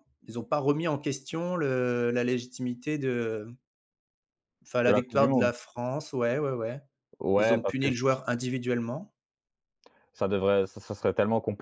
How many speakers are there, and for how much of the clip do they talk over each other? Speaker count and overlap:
2, about 10%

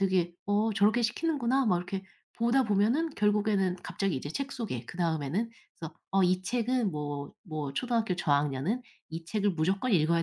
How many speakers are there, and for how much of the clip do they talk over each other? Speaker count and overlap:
1, no overlap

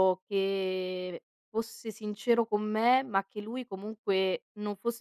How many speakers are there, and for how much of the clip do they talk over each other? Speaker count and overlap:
1, no overlap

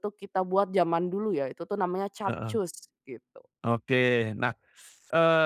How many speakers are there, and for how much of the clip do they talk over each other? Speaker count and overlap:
2, about 5%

